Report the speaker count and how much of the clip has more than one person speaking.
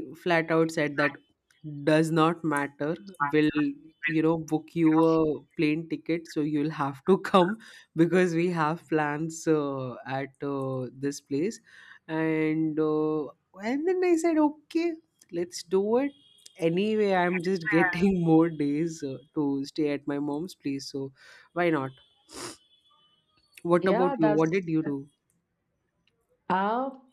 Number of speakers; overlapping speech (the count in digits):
2, about 2%